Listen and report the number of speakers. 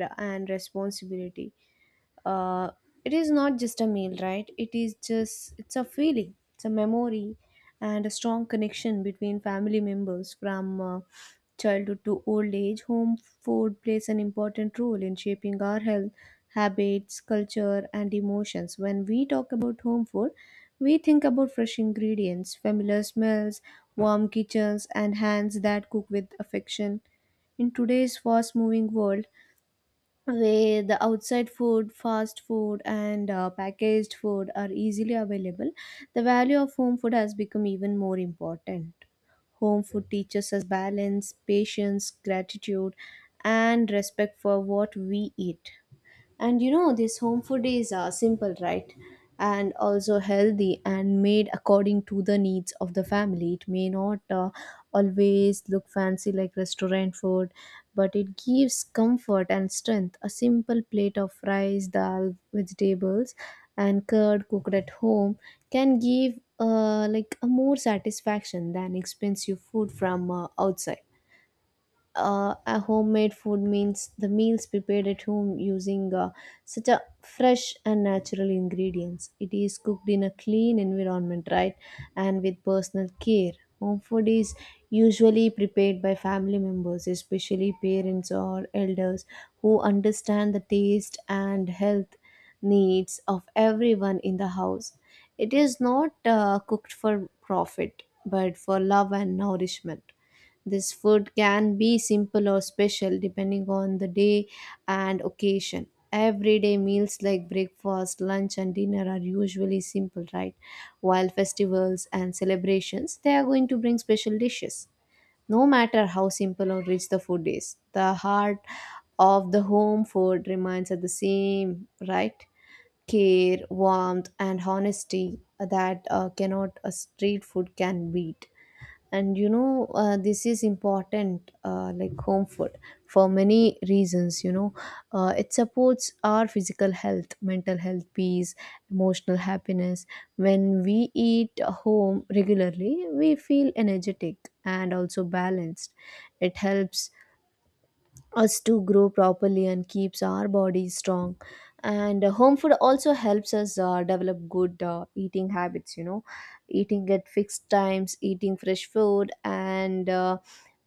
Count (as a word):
one